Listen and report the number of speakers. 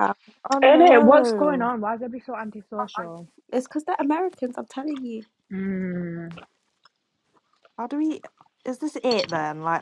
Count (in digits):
3